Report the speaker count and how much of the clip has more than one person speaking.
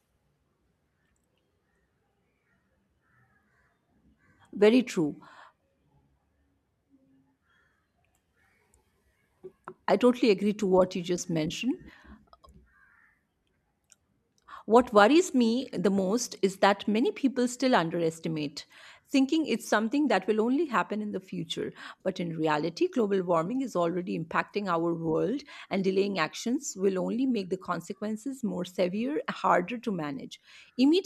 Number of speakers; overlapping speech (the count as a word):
one, no overlap